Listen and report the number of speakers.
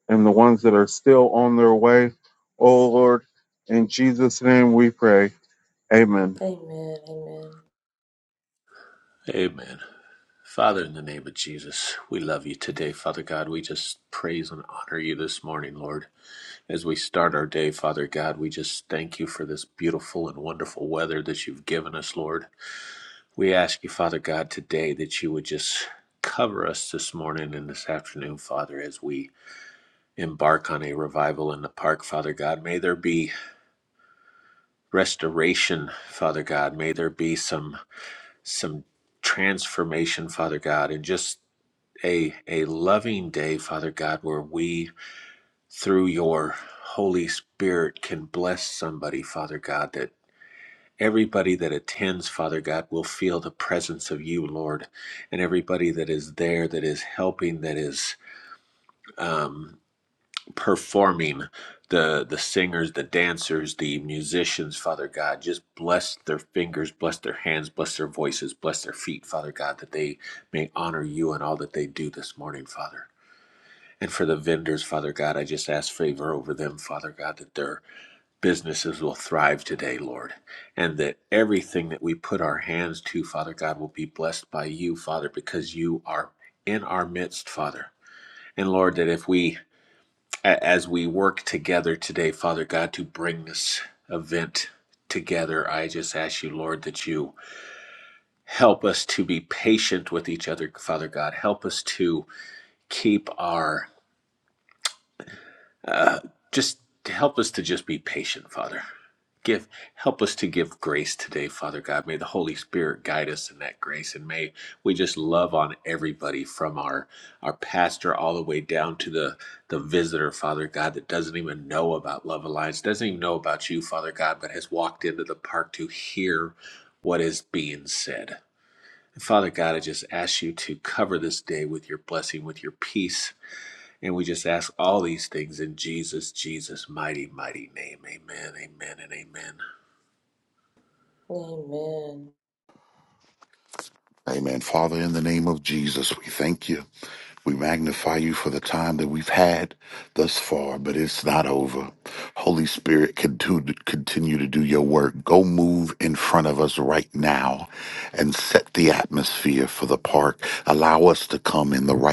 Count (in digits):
4